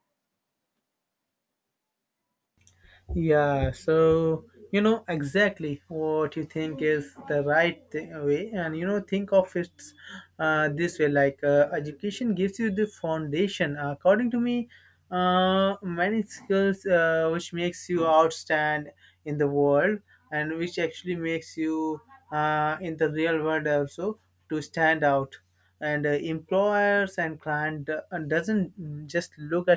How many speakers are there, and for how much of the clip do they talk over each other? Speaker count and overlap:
1, no overlap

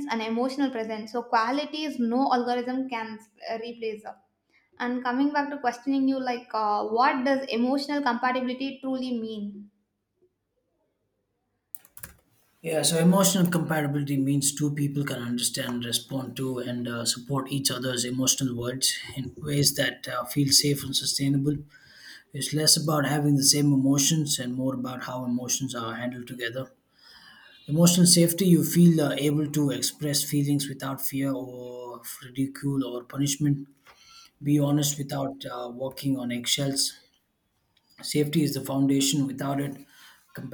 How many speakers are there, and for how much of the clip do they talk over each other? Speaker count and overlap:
2, no overlap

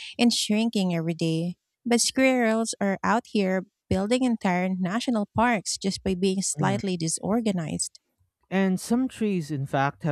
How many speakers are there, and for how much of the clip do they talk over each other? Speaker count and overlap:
2, about 3%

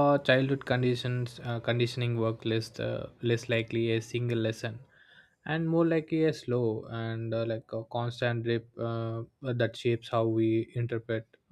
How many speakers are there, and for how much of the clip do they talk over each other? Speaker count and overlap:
1, no overlap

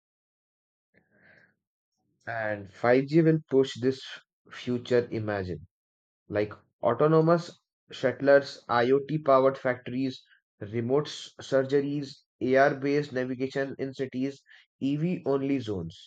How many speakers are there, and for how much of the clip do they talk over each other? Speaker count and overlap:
1, no overlap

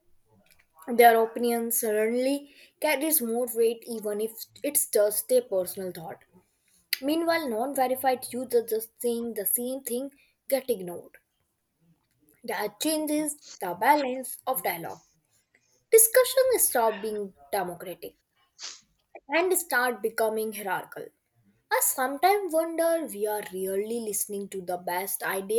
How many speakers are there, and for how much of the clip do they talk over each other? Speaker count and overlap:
1, no overlap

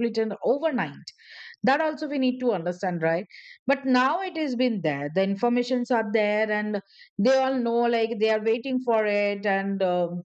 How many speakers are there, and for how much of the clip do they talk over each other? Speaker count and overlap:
1, no overlap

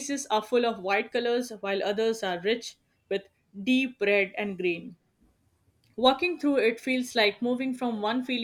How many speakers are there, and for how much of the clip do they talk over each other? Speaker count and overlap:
1, no overlap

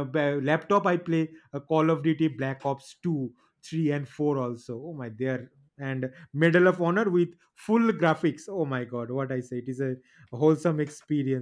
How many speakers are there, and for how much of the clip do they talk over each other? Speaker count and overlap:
1, no overlap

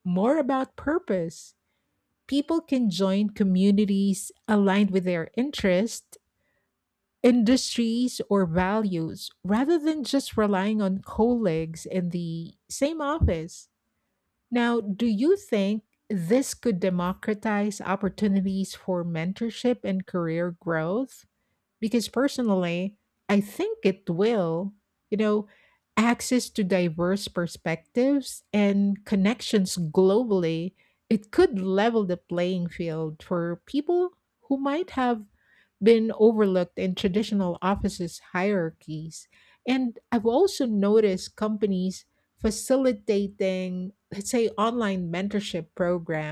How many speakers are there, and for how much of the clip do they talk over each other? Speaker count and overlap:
1, no overlap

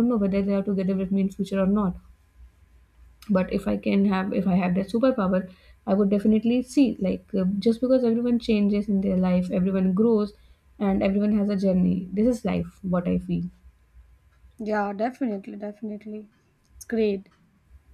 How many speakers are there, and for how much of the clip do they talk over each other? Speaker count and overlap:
2, no overlap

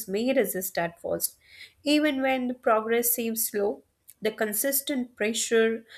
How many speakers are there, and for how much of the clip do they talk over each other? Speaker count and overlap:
1, no overlap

